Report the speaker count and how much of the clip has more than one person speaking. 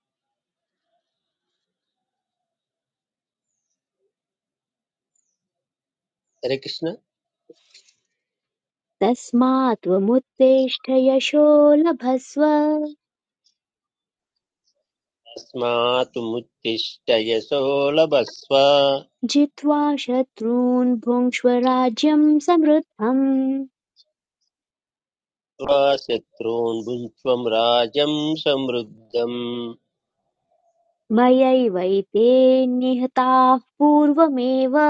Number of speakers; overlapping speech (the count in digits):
2, no overlap